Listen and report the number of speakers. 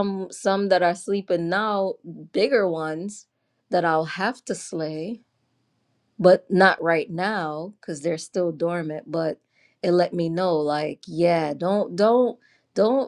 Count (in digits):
1